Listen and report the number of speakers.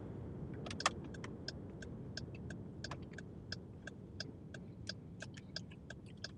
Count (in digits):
0